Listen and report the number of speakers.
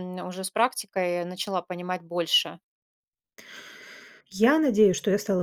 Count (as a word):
two